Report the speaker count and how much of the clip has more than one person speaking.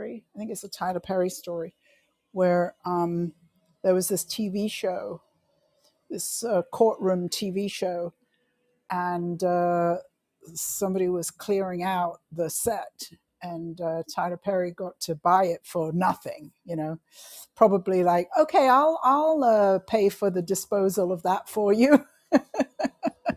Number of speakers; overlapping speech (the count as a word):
one, no overlap